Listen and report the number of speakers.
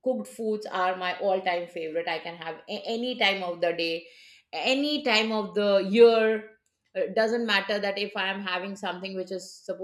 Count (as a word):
one